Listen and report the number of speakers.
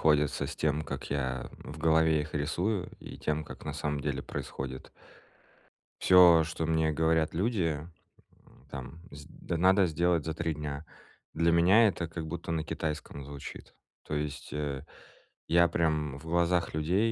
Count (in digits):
1